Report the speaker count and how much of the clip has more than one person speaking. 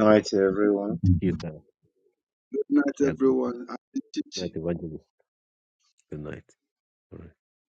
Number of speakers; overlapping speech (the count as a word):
three, about 8%